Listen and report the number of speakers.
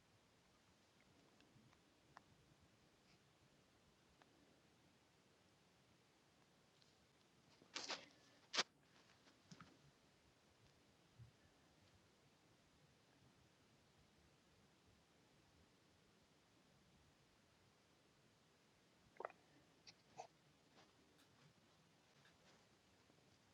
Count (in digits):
0